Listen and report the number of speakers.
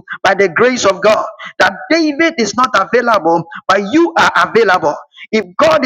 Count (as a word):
one